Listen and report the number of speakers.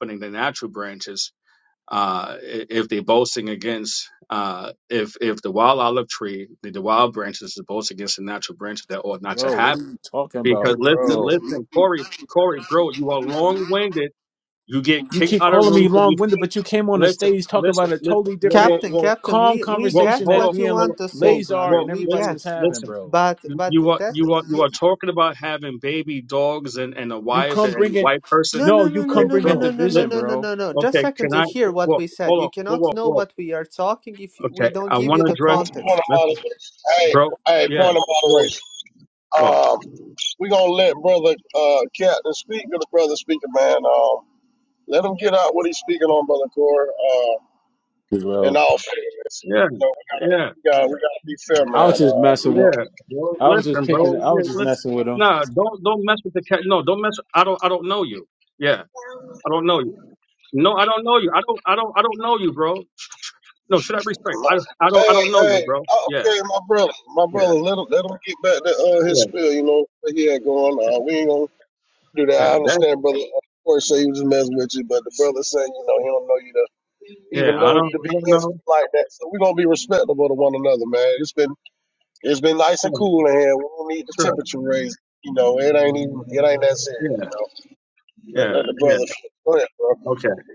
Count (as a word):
four